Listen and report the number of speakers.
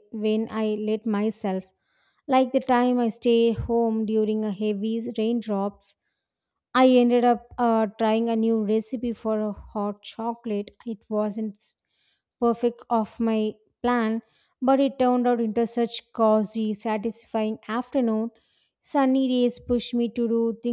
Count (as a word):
one